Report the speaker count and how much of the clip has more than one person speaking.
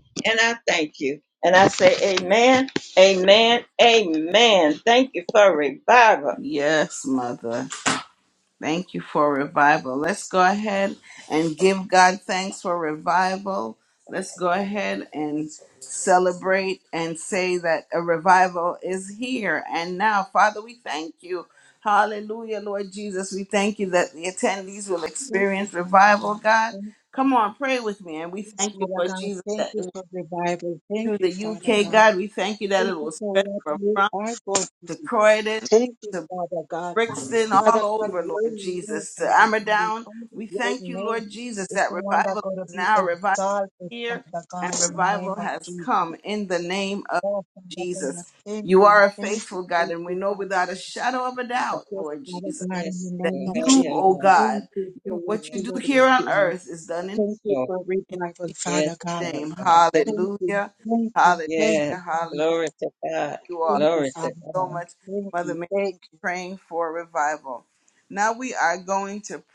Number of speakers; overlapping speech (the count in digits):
3, about 33%